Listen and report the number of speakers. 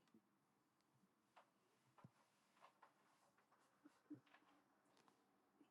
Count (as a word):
zero